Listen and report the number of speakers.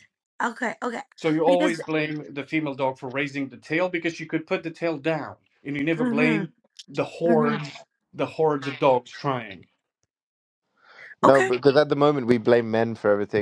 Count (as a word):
three